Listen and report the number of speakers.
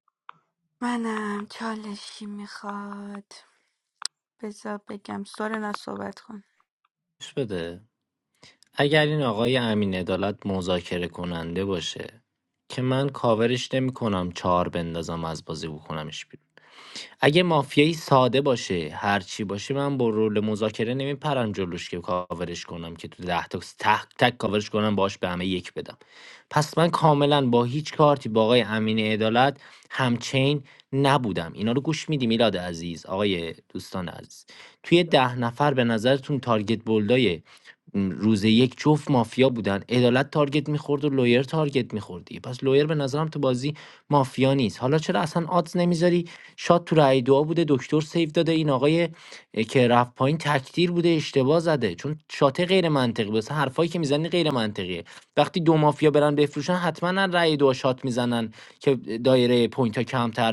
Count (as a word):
two